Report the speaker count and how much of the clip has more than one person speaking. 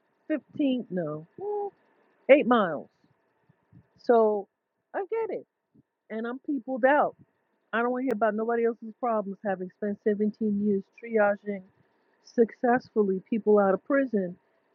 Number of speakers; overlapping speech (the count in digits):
1, no overlap